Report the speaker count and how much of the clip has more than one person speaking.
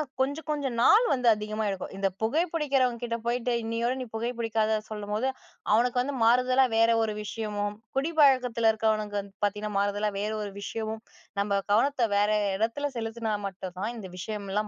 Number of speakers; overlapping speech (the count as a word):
one, no overlap